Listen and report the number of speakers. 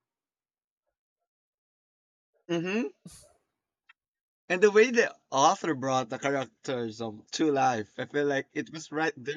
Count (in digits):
1